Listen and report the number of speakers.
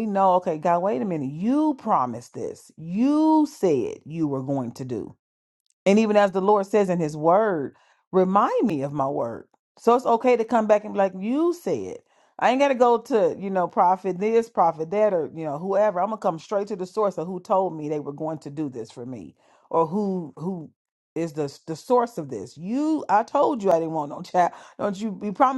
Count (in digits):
1